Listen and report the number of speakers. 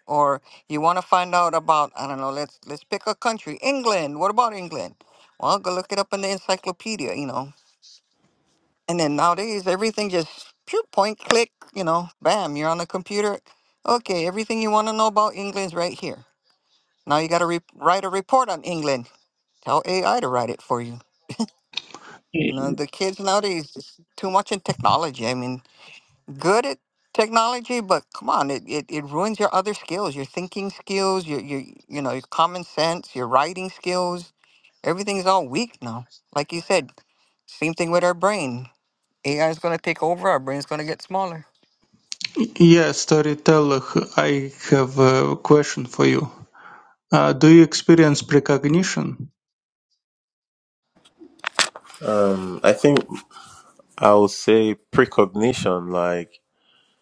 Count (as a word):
three